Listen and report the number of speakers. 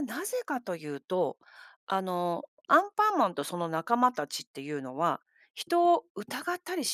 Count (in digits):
1